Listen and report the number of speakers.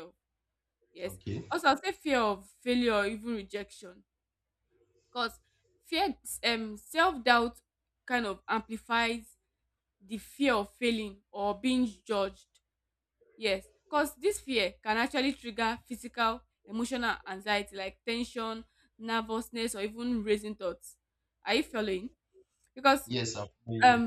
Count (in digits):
2